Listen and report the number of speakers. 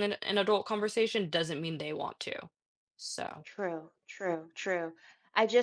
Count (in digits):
2